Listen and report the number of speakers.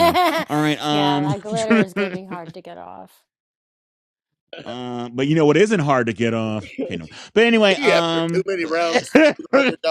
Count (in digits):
3